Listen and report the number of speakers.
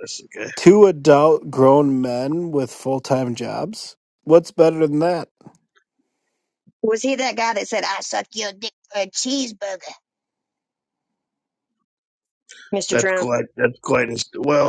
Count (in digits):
3